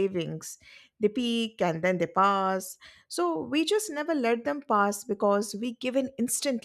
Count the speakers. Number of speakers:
one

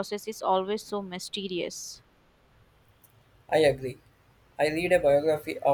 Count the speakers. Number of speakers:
two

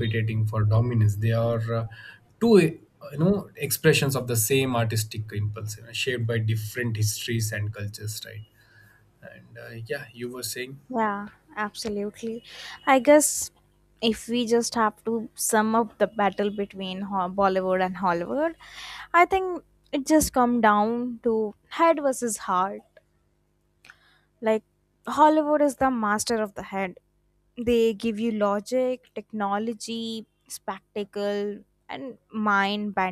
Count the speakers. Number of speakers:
two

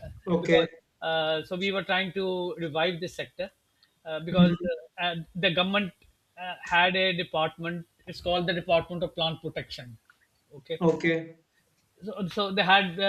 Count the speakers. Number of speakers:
two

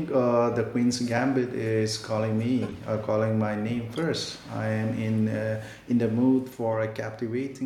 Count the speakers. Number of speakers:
one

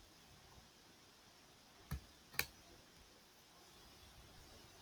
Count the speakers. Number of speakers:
zero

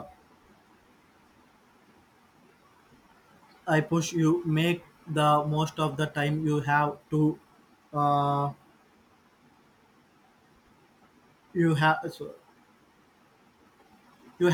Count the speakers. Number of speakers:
one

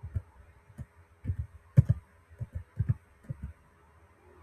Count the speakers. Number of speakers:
zero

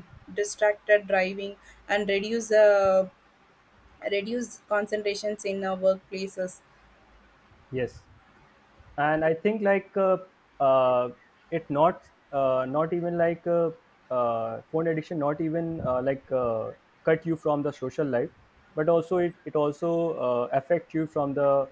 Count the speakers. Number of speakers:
two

